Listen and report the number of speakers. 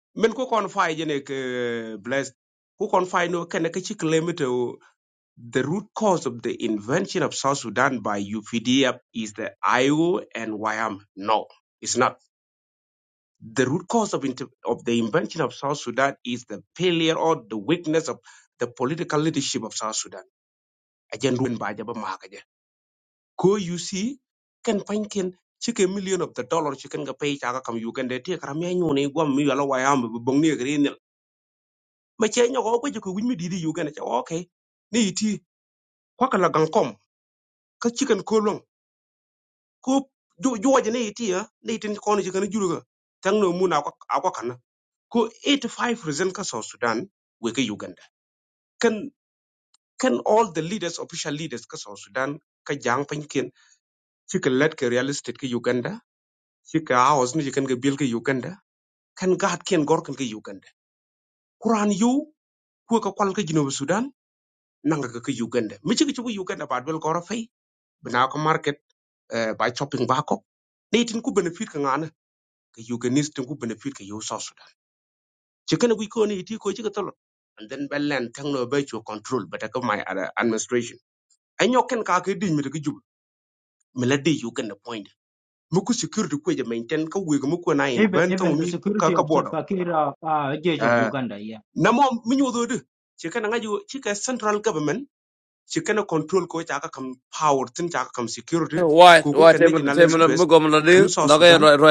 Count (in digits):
3